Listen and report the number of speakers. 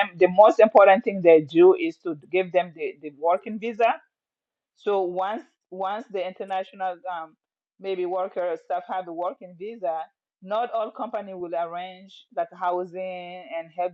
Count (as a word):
one